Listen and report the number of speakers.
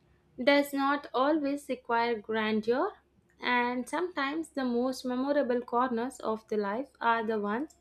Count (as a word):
one